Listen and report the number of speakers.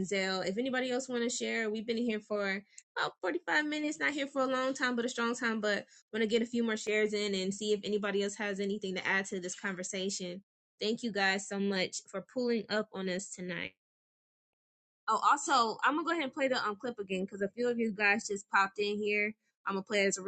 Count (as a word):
one